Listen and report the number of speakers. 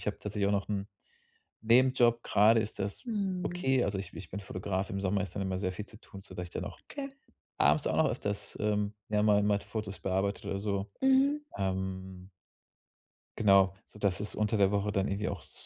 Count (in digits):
2